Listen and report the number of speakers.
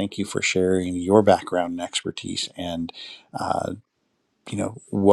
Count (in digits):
1